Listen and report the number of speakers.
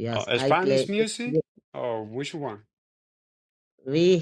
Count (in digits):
2